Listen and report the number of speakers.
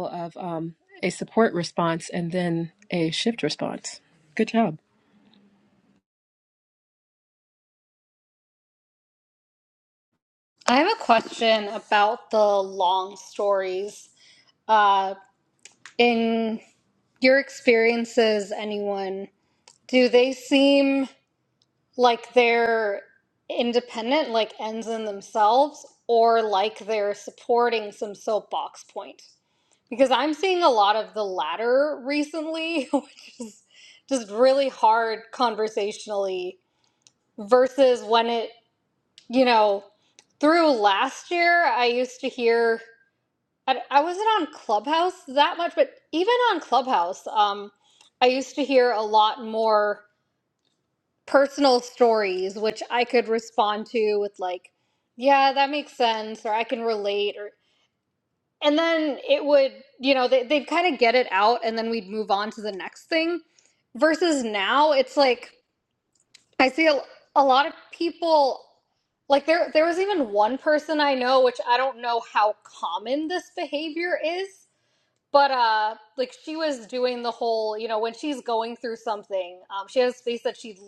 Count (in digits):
2